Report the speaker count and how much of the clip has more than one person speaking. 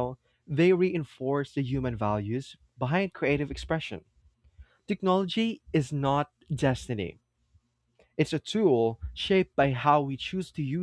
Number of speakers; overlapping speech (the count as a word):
one, no overlap